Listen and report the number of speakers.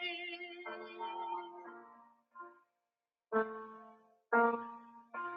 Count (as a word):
zero